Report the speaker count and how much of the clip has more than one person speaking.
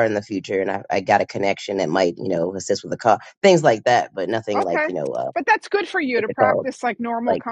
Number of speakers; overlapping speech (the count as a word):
two, about 15%